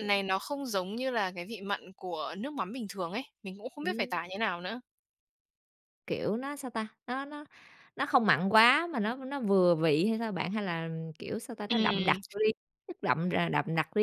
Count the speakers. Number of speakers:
two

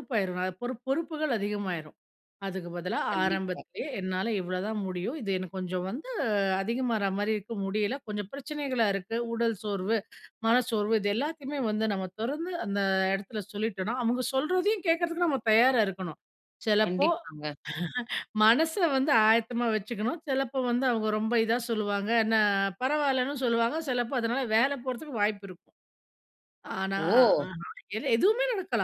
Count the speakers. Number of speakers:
two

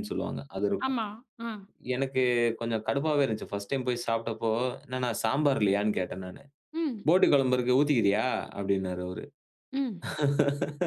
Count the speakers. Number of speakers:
two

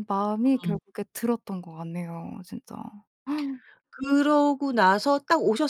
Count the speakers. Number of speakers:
two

